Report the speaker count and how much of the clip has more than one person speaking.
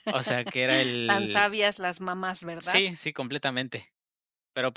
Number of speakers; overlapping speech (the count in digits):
2, about 13%